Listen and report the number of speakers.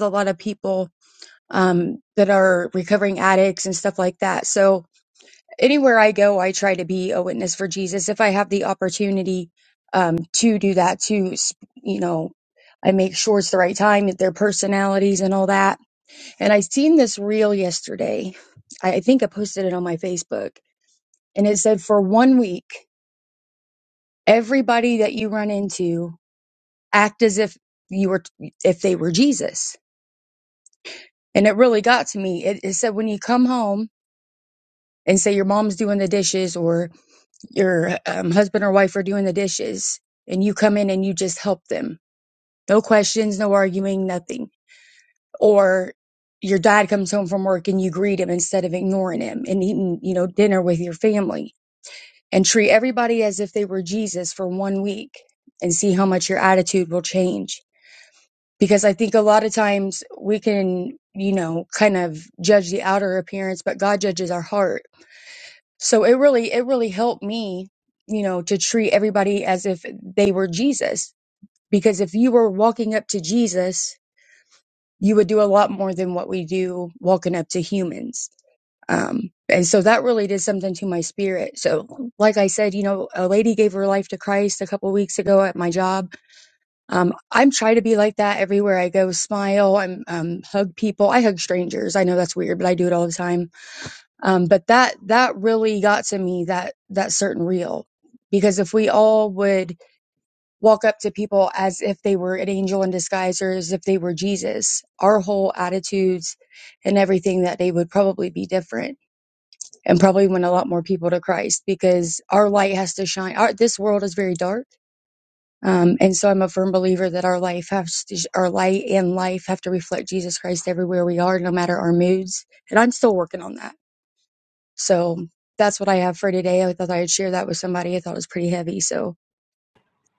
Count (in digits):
1